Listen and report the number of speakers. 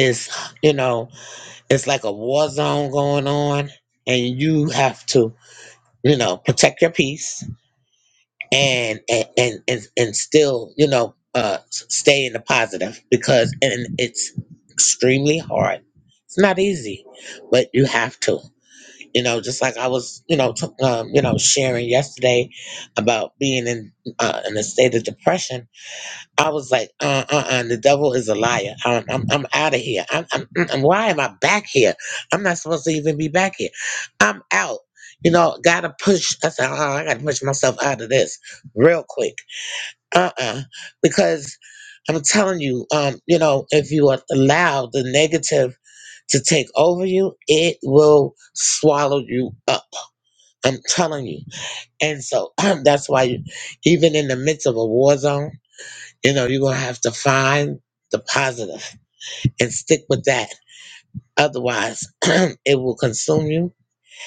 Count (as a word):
one